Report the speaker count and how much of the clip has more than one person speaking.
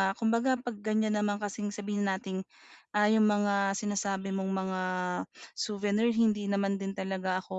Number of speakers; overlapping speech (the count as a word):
one, no overlap